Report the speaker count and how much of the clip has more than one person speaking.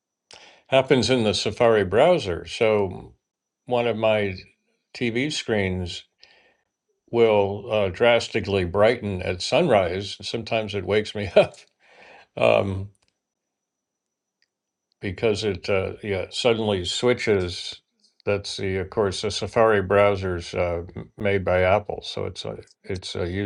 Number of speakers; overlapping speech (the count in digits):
1, no overlap